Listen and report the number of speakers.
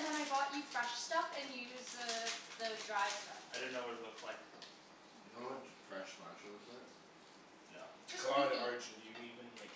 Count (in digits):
4